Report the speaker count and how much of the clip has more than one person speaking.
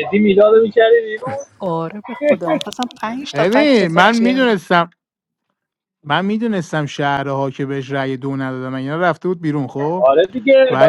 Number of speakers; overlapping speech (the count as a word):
three, about 13%